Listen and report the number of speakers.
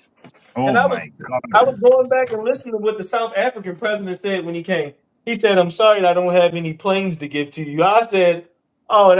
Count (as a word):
two